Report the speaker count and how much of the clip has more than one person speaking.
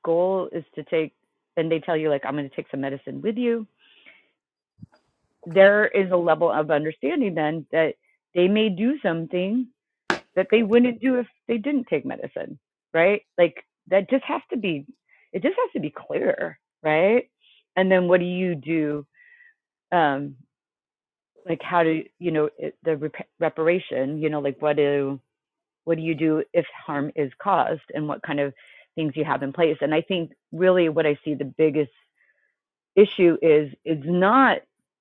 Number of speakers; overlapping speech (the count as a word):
one, no overlap